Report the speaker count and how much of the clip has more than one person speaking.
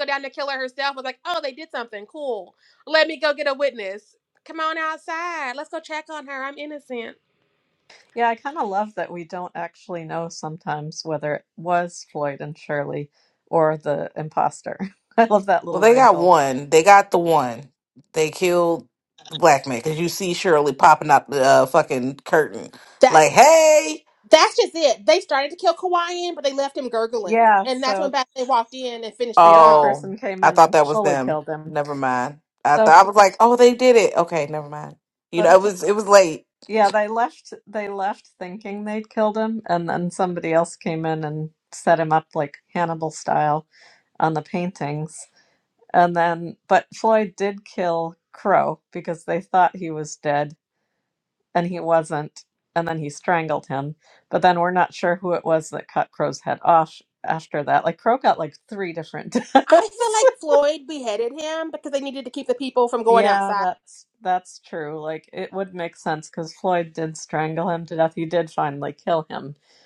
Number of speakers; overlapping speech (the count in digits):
3, about 7%